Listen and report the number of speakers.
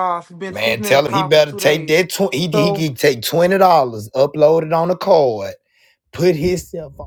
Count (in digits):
2